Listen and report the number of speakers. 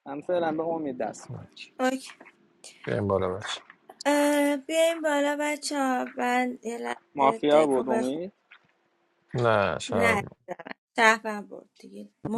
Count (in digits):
3